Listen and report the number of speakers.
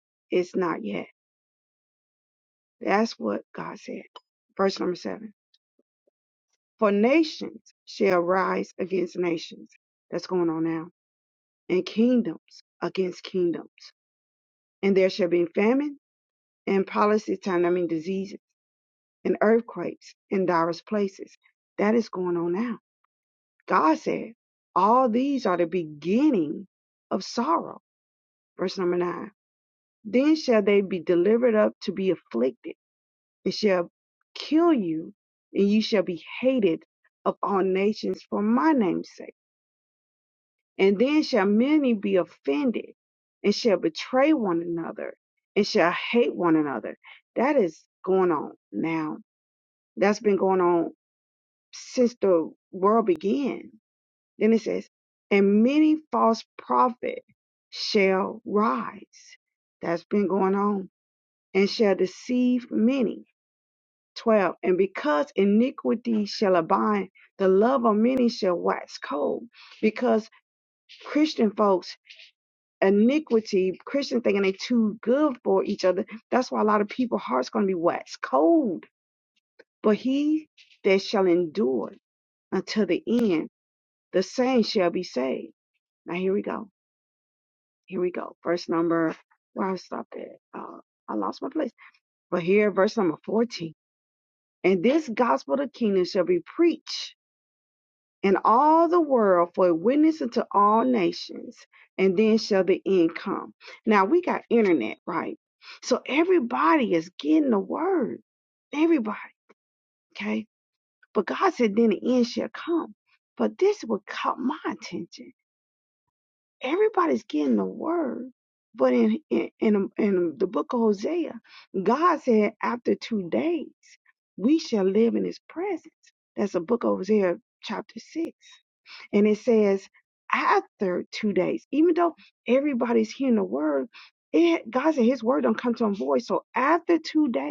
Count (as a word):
one